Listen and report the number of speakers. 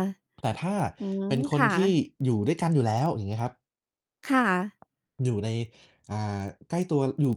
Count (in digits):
2